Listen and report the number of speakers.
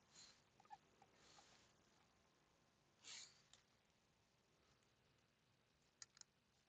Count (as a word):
zero